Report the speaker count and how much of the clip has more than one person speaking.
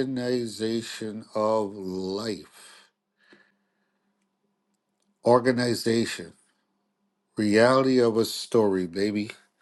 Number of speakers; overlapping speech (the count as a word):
one, no overlap